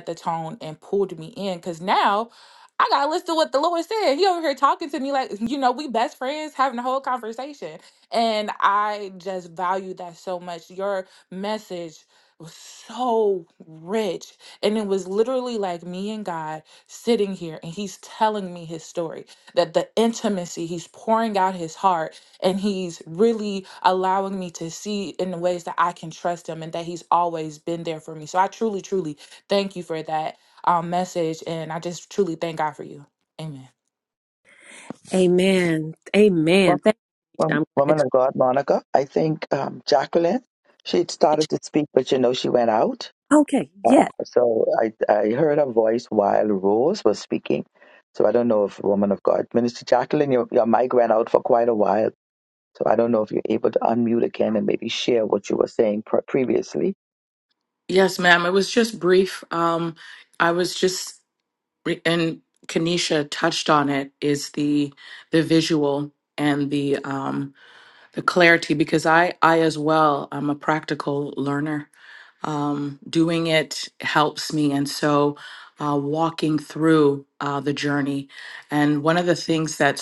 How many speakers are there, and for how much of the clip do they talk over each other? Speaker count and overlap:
four, about 1%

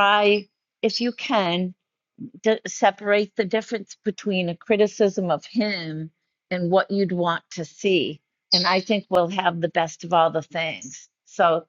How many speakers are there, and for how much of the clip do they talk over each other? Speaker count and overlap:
one, no overlap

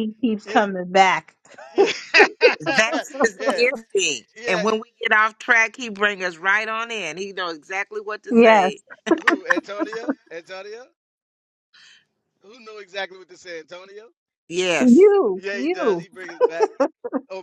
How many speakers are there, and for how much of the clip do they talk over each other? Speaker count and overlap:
three, about 10%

